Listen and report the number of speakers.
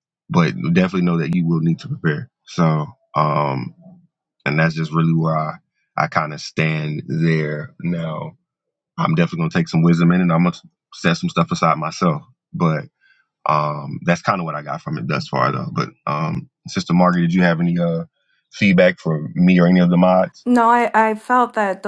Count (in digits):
2